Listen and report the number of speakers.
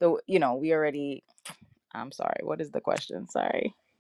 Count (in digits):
1